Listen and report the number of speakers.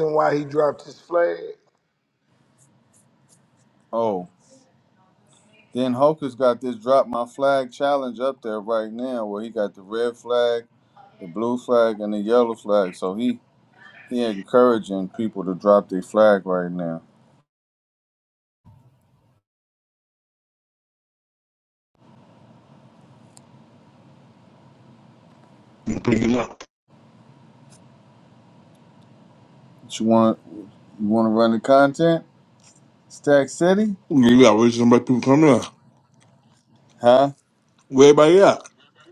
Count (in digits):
3